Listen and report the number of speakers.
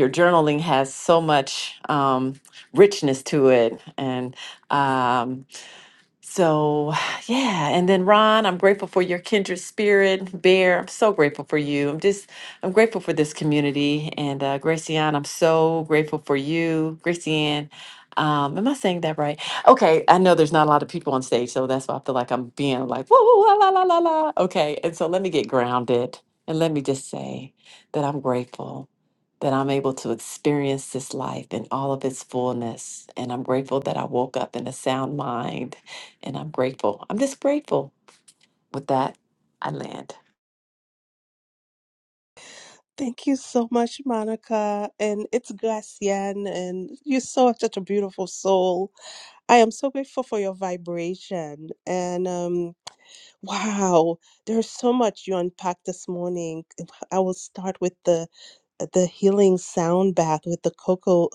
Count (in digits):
2